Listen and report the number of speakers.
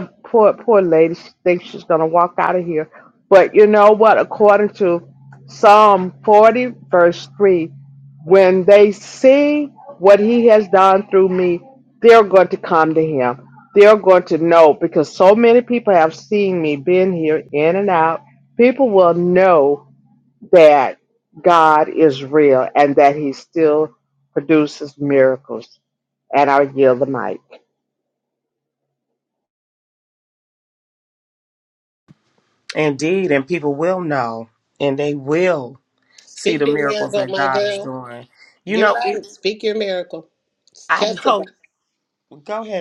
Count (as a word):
three